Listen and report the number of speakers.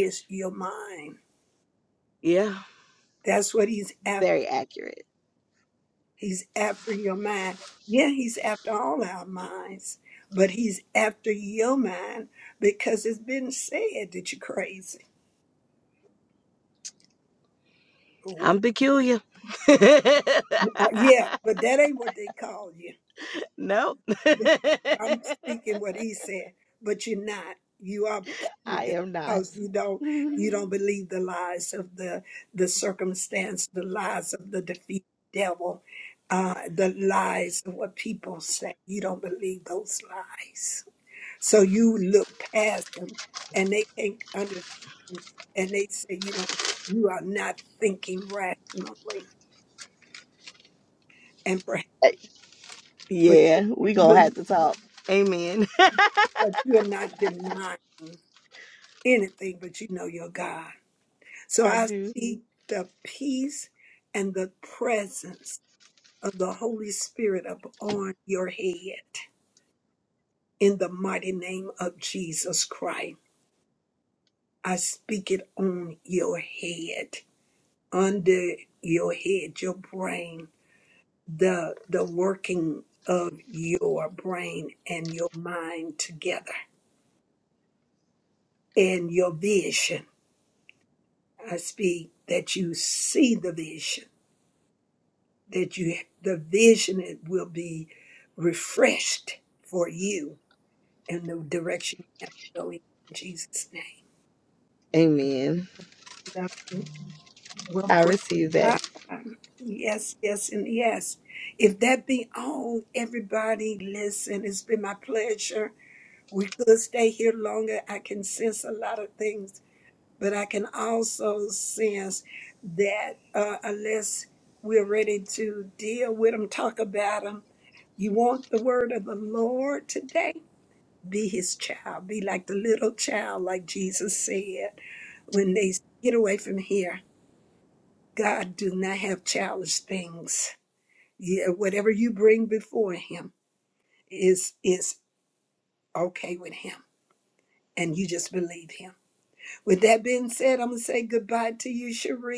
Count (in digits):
2